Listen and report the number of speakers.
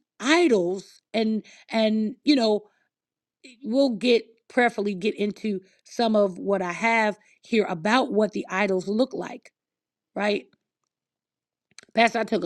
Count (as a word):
one